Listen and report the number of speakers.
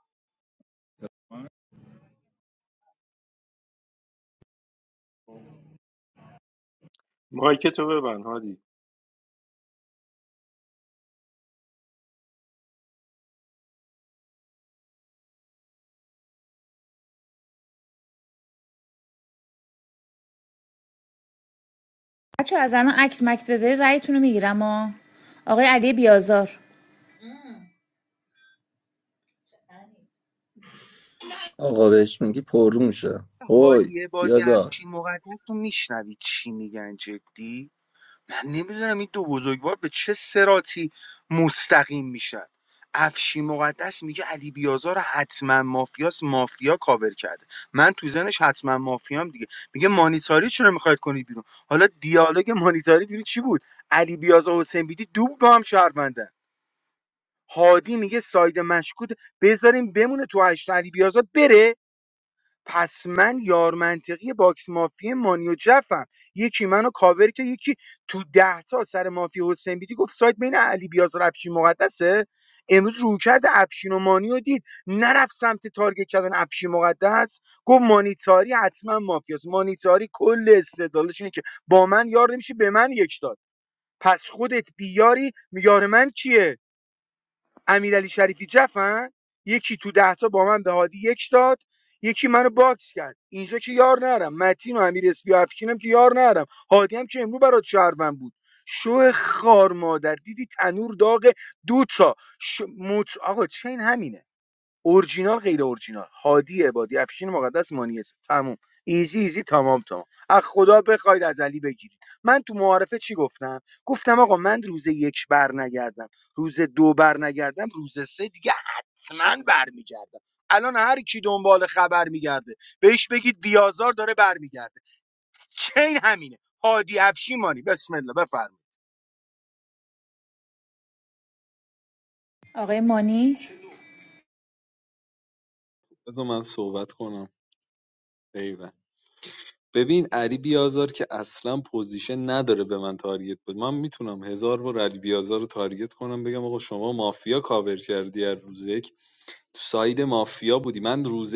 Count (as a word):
five